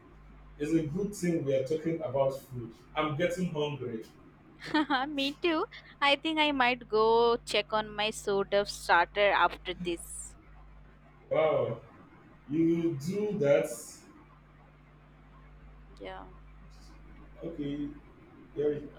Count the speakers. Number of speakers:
two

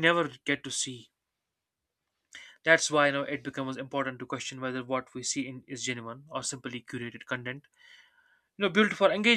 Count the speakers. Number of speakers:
one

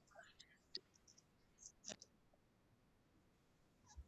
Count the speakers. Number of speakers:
zero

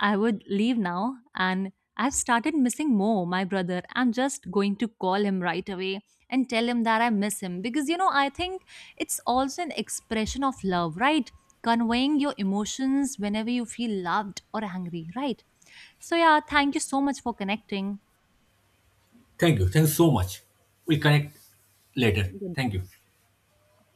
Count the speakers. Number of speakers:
two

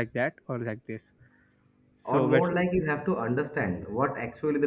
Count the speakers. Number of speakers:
two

